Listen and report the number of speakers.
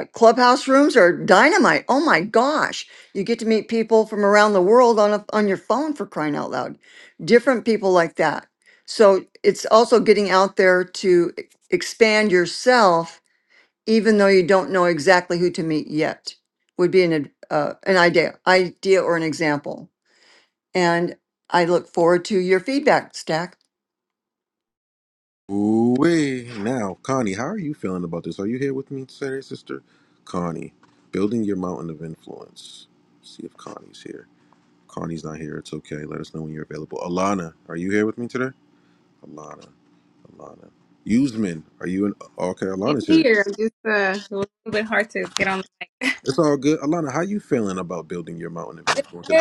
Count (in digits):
3